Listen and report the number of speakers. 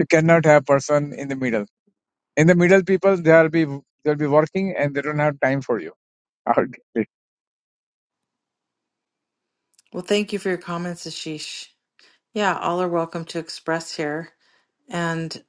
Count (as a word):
two